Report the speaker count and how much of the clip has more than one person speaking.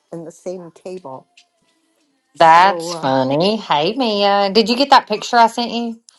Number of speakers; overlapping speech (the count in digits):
2, about 8%